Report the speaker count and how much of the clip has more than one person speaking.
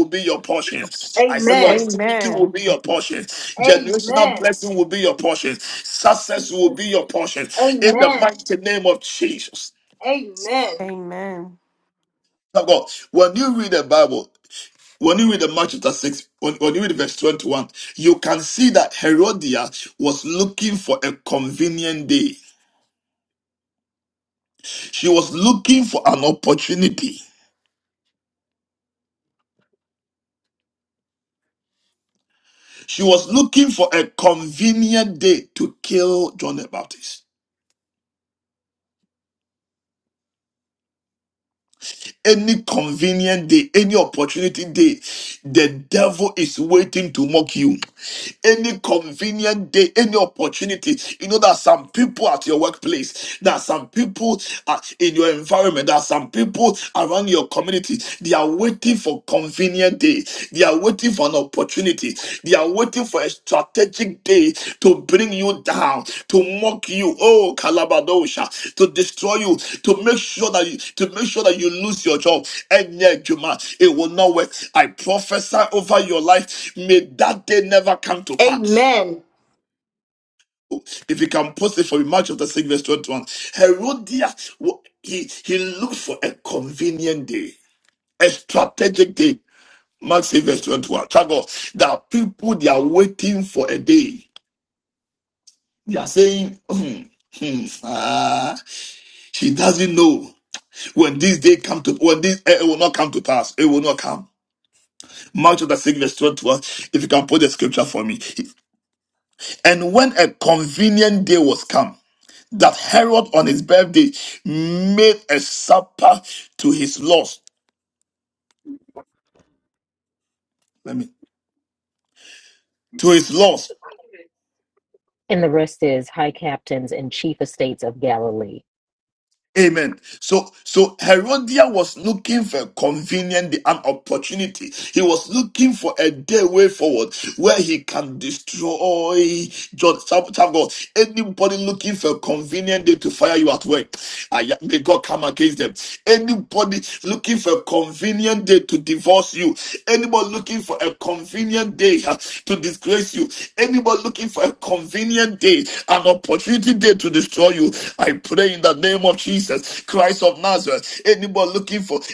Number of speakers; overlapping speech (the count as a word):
four, about 2%